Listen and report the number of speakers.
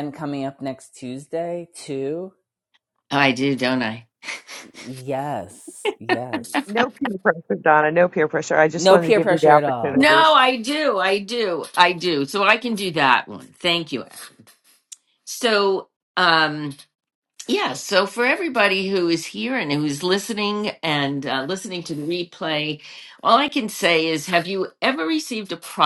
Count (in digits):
3